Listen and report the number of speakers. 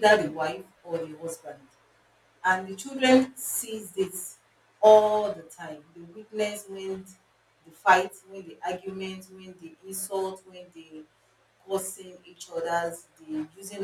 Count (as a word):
one